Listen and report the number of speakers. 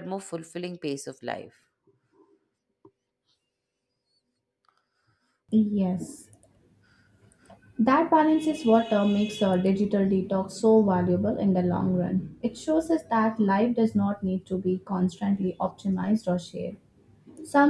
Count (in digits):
2